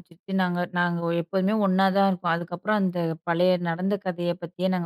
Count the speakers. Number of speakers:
1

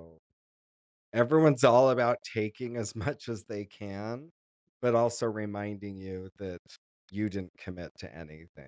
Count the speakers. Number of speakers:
1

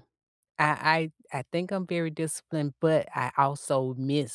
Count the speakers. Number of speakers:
1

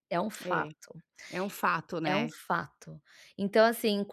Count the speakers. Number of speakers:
2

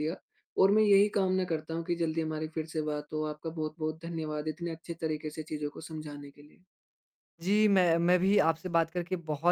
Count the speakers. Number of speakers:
2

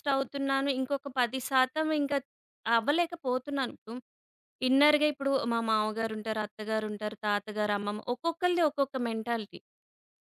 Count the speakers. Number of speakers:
1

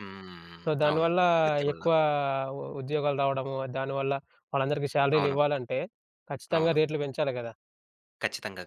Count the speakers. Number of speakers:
2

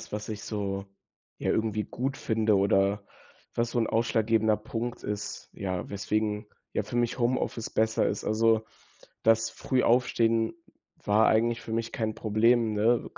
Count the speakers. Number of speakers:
1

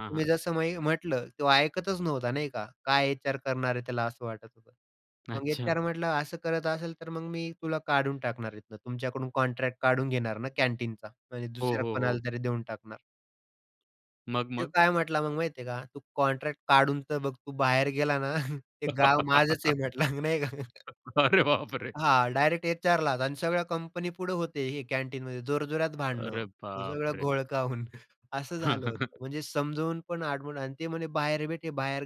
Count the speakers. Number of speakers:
2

